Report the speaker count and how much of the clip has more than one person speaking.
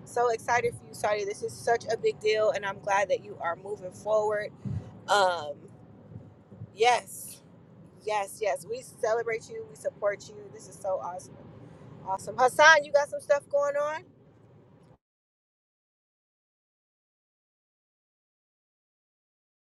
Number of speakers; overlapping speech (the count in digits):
1, no overlap